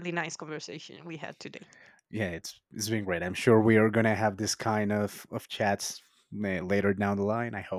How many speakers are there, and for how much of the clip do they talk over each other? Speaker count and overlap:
2, no overlap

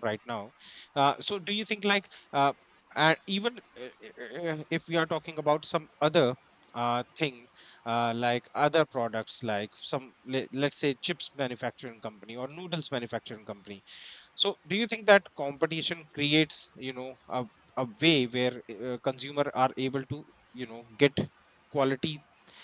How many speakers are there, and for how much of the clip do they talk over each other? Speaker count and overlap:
1, no overlap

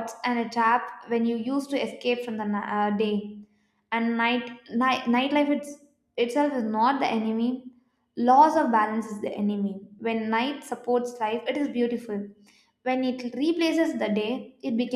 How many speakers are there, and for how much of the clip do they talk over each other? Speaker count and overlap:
1, no overlap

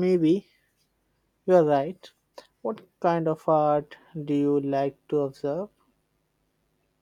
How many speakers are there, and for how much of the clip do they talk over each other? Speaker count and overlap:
1, no overlap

